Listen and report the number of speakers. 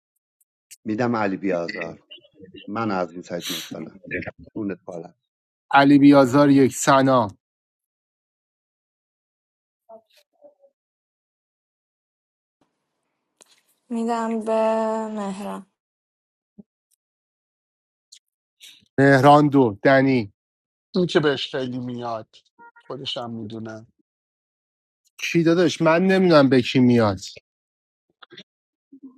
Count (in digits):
4